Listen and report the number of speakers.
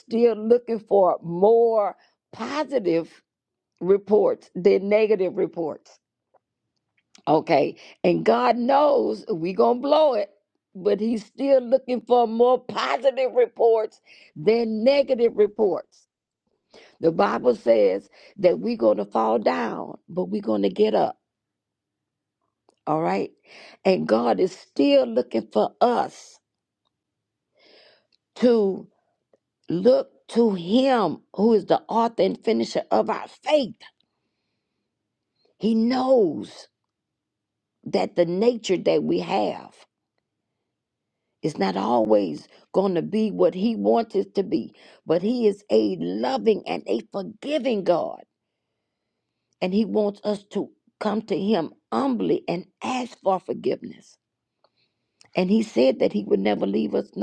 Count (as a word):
one